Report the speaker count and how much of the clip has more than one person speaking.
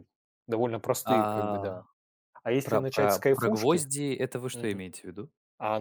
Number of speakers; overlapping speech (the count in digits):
2, about 37%